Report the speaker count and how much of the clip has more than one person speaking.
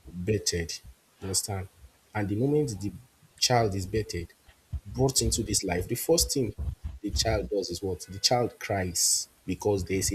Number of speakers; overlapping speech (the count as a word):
one, no overlap